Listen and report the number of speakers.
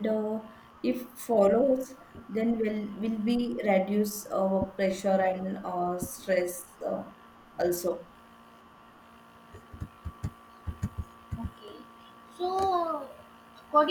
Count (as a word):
two